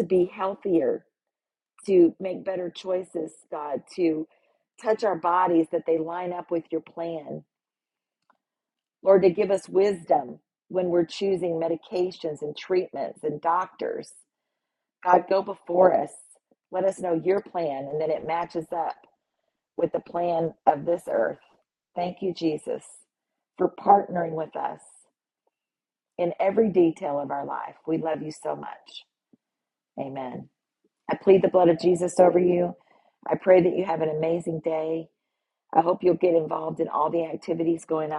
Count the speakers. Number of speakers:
1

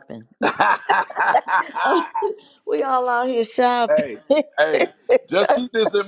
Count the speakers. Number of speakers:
2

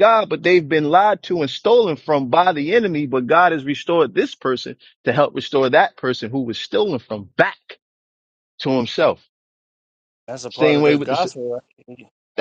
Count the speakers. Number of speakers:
2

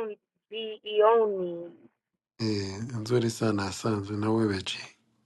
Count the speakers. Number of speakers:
2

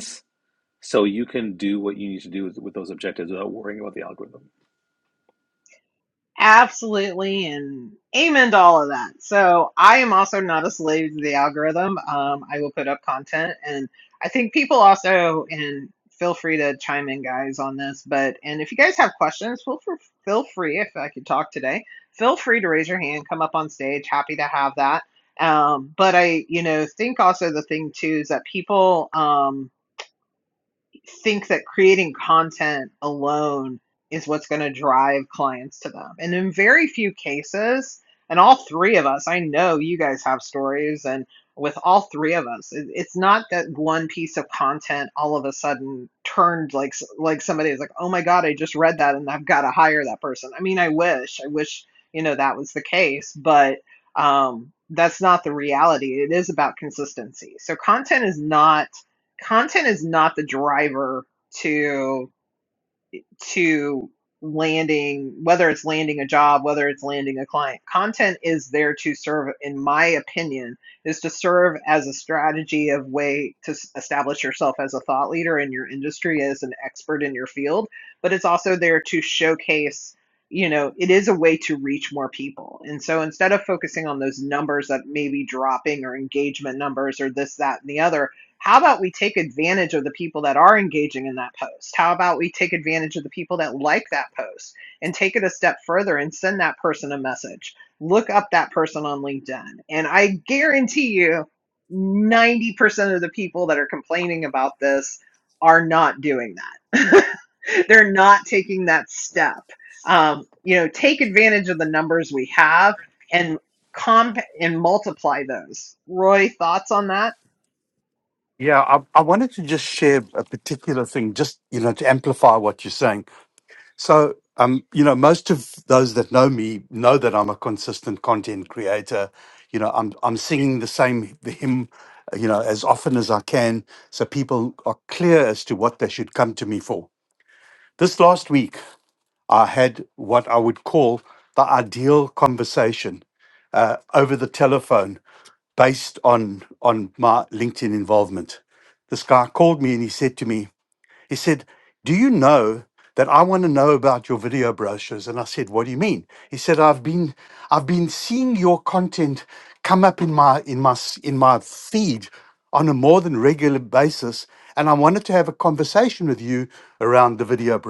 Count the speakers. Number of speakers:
3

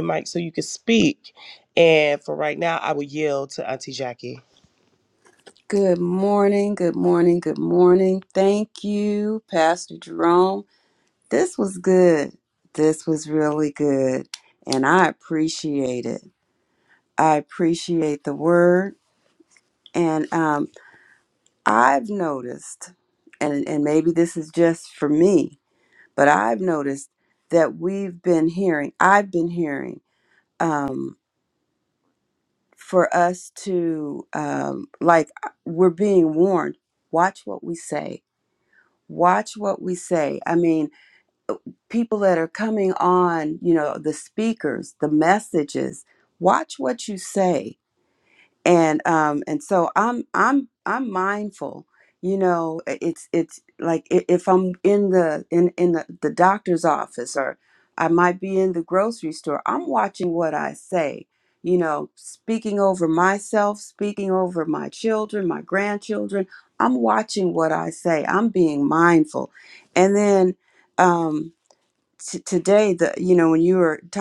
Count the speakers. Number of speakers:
2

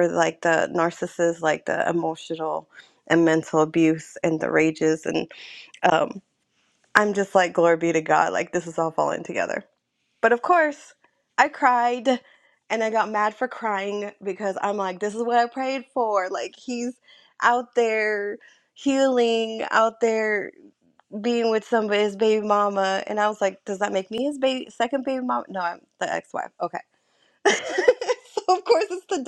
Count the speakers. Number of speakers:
1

